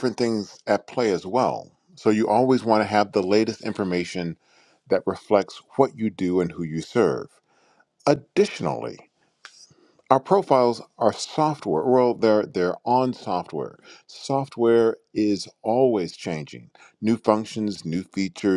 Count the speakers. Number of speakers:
1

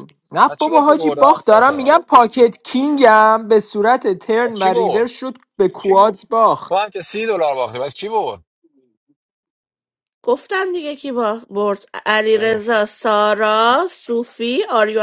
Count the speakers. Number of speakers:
3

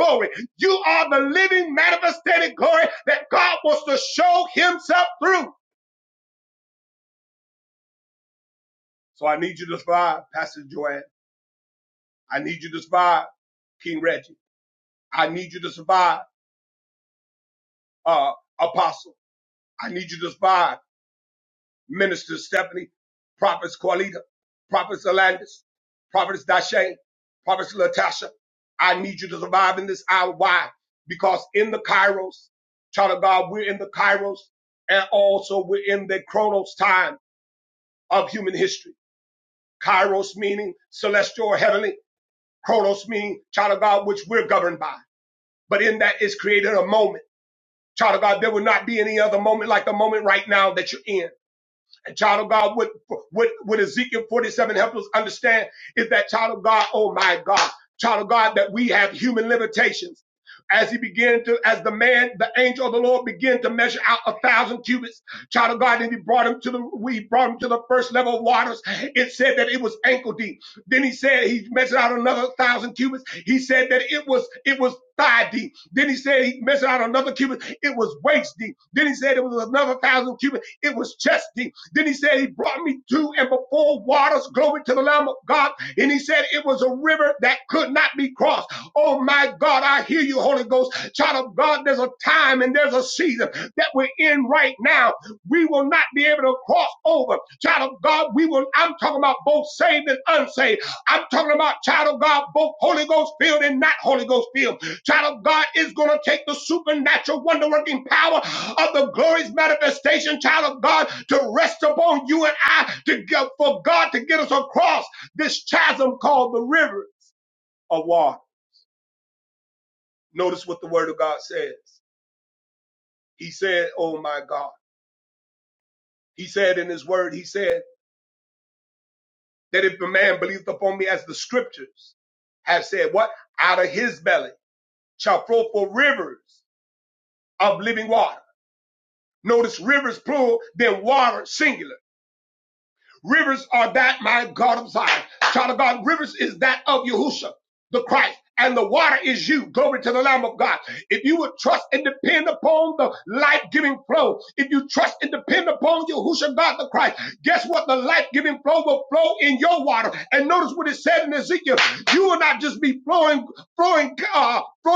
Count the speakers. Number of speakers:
1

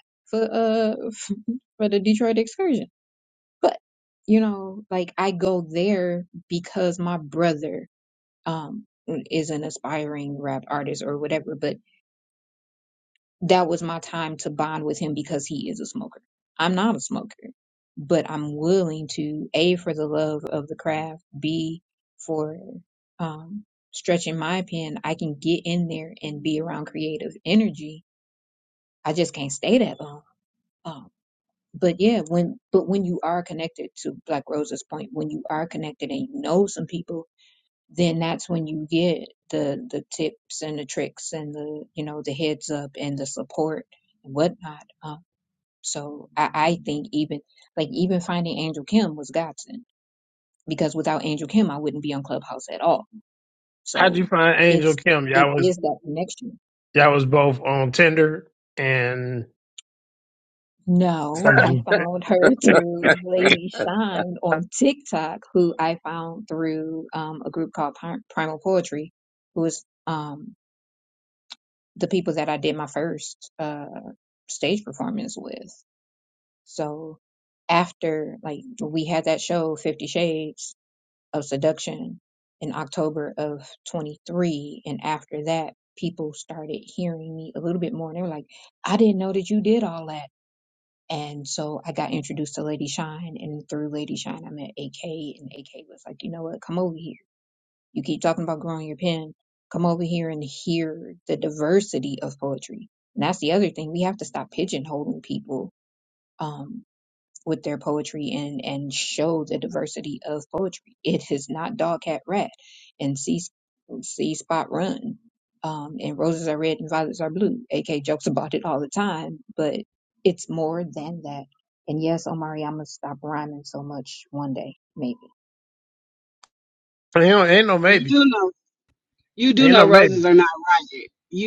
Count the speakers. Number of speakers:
3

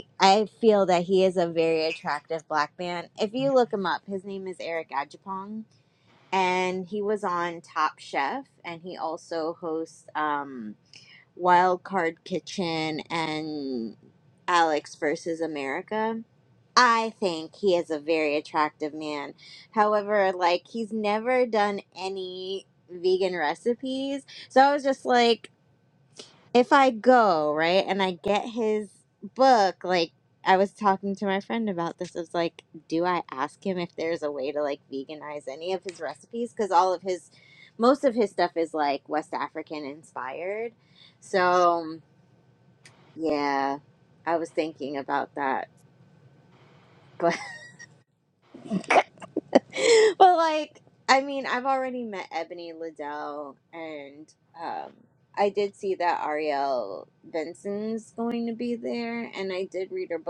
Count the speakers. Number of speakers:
1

